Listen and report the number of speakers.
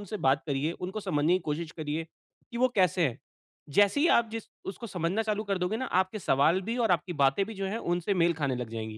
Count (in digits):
1